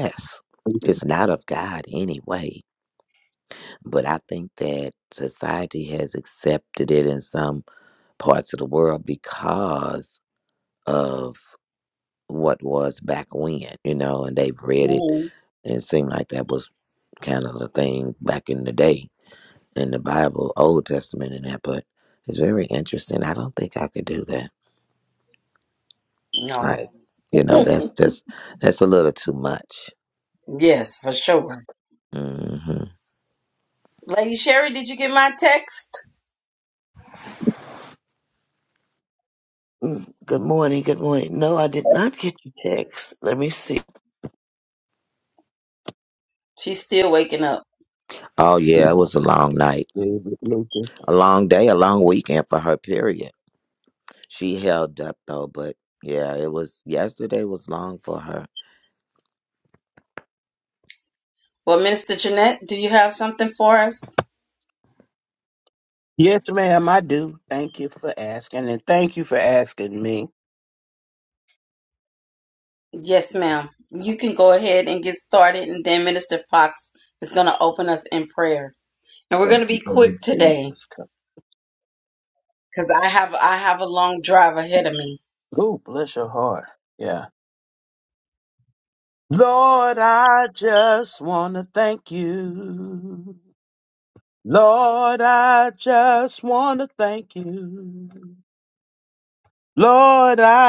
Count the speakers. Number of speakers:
4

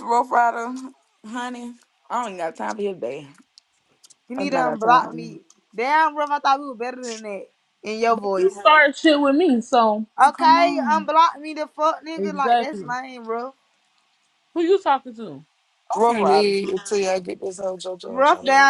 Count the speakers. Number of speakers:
4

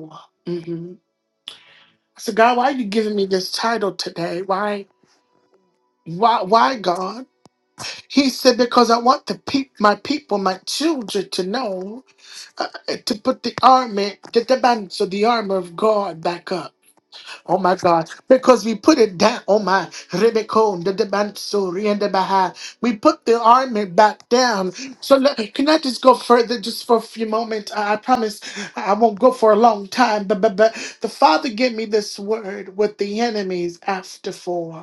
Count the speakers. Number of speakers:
1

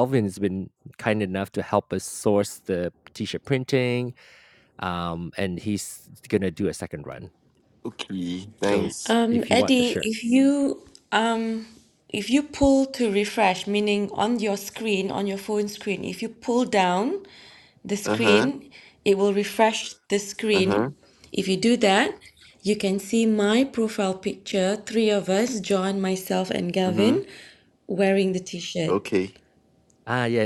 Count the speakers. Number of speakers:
3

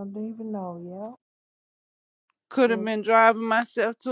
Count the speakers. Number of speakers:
2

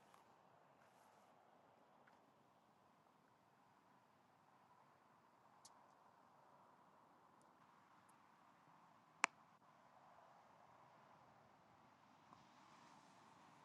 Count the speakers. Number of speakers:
0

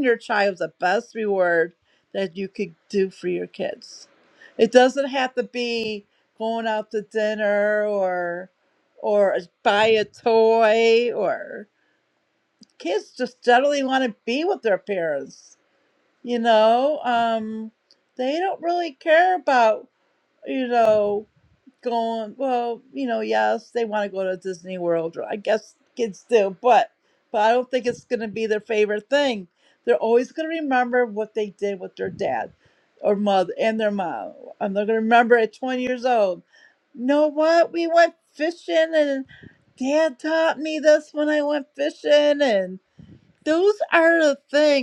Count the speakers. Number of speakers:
1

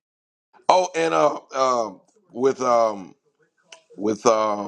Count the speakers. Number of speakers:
1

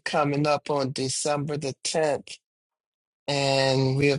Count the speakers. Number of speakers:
1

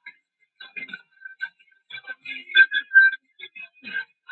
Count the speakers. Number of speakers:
0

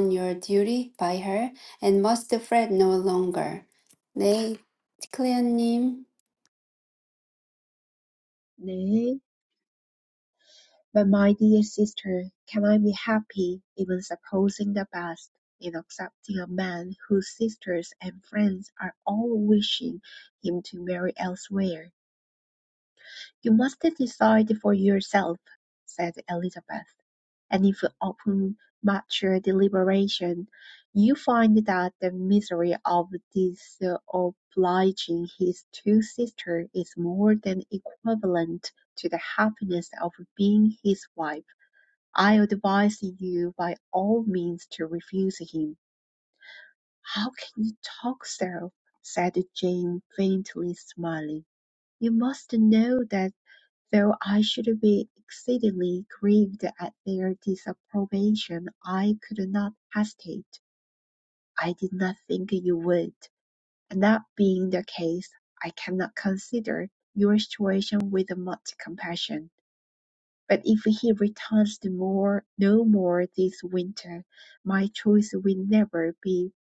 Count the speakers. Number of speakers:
2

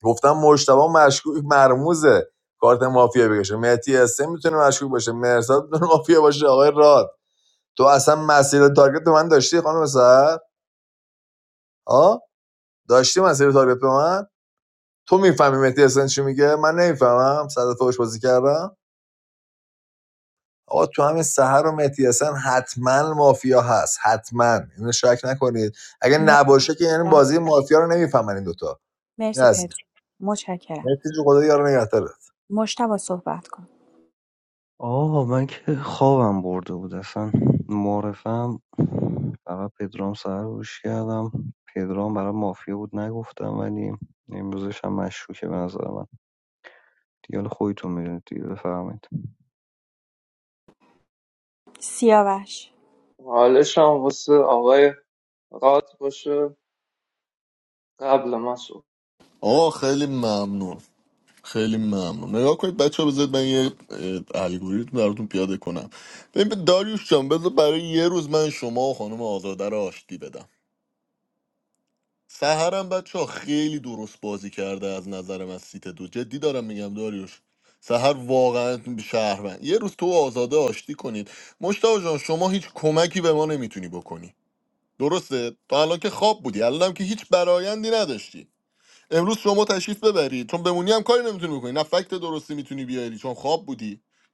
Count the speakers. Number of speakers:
5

